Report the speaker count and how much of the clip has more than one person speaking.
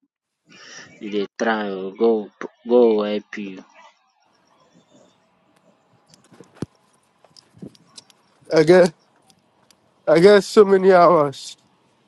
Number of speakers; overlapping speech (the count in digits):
2, no overlap